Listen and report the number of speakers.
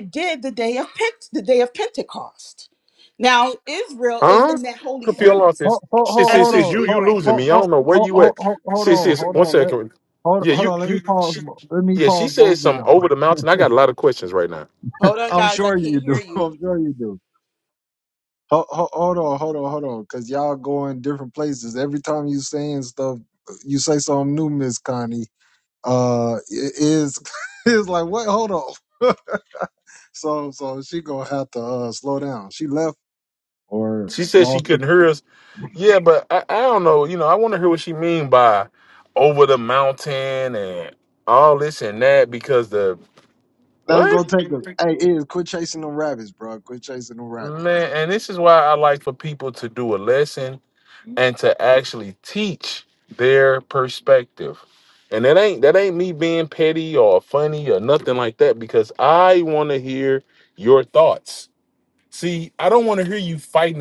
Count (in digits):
3